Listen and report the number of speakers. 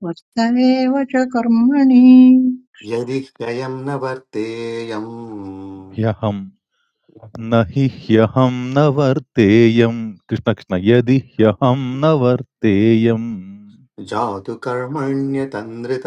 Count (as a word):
three